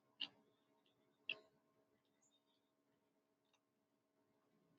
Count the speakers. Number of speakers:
zero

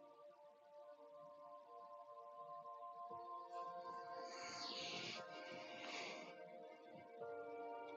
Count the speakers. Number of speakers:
zero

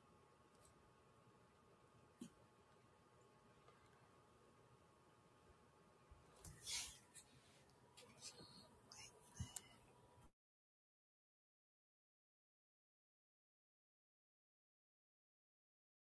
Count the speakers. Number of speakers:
zero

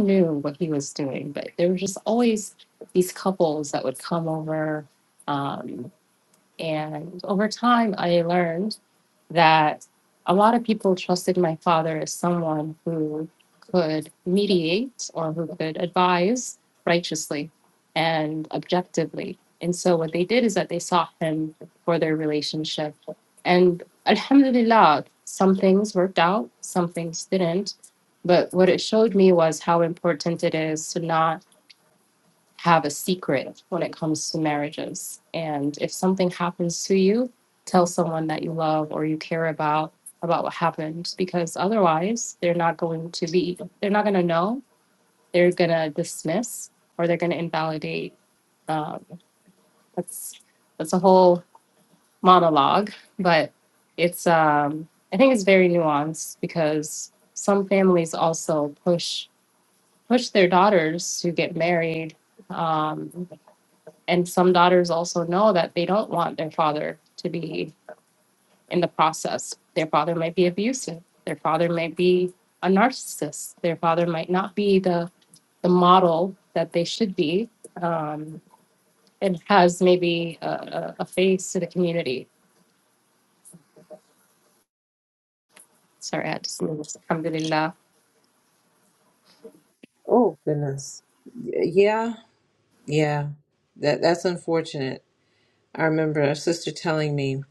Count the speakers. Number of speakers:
two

